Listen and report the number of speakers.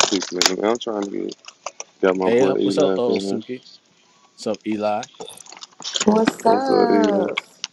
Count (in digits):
3